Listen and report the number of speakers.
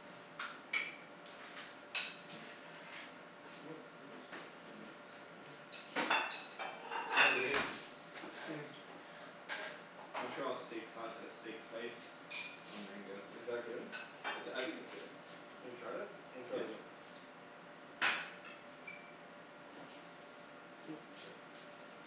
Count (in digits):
2